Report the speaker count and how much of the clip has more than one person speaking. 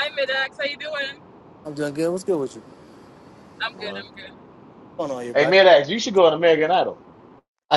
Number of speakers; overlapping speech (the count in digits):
3, about 6%